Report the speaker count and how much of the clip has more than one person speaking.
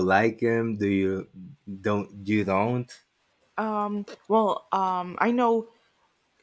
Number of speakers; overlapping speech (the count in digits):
2, no overlap